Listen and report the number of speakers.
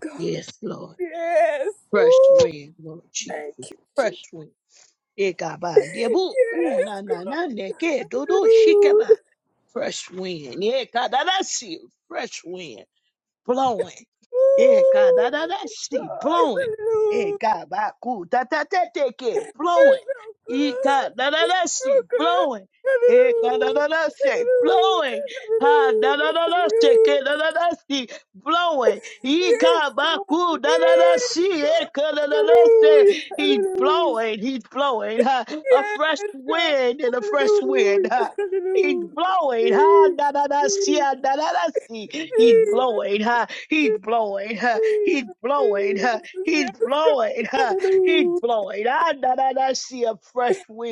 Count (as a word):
two